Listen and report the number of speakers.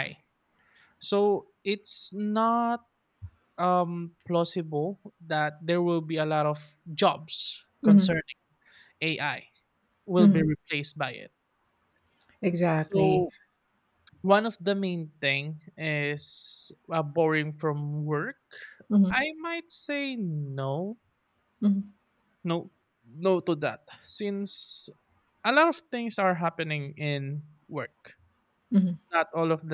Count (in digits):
2